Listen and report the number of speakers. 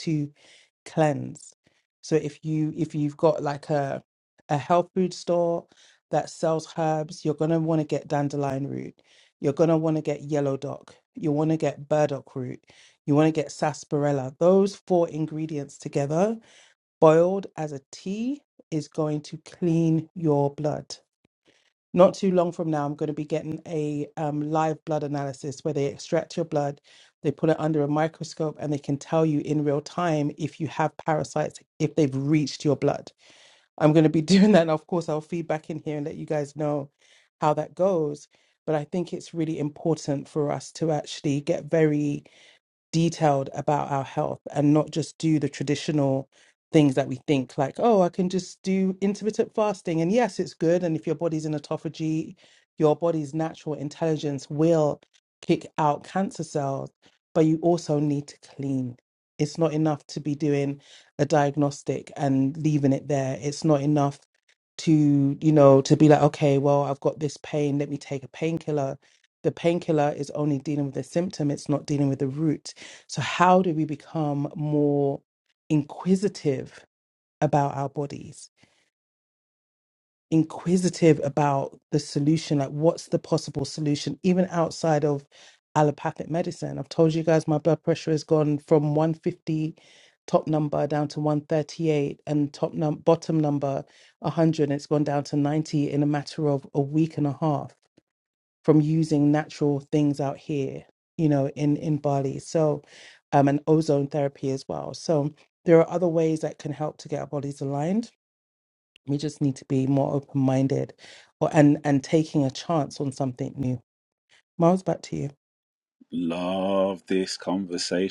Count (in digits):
2